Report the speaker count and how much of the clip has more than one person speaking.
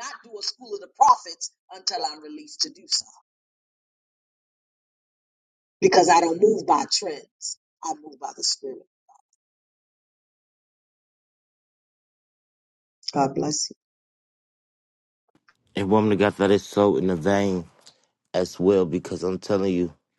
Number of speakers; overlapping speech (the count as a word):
two, no overlap